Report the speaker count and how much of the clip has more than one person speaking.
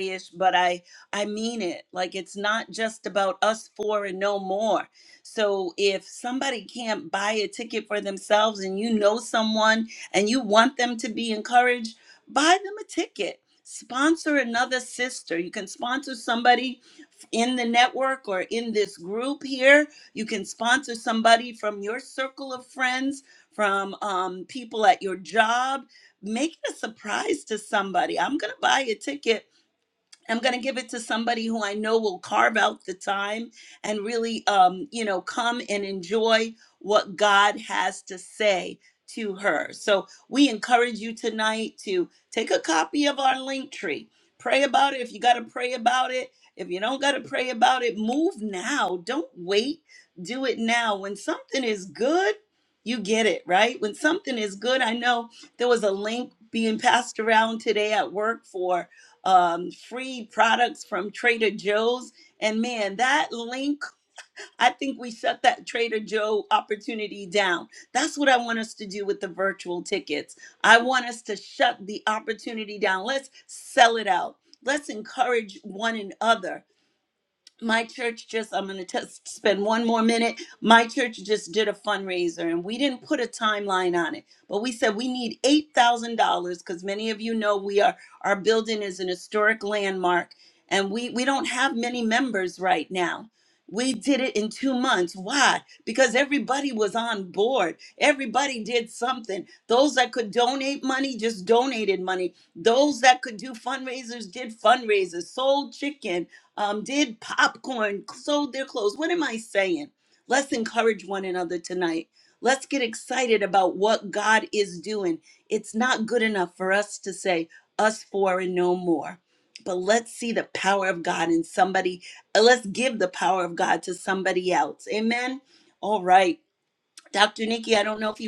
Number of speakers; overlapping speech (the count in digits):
1, no overlap